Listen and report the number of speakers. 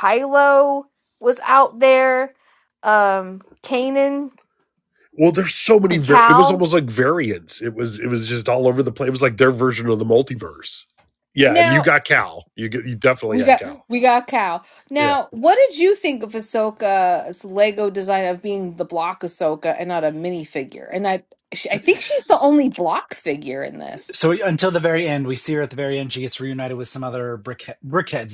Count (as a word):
three